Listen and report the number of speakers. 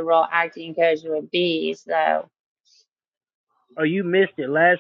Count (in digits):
2